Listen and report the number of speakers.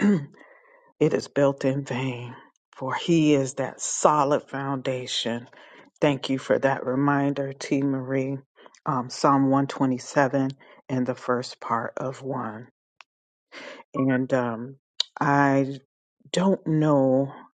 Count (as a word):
one